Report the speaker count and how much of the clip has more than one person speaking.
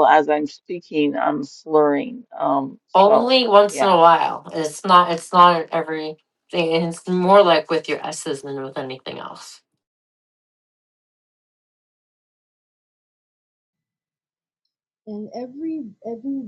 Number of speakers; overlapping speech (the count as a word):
three, about 3%